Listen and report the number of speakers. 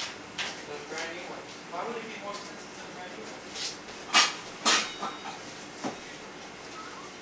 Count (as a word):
one